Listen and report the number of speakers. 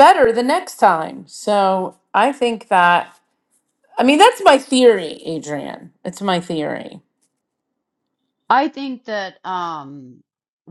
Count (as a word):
two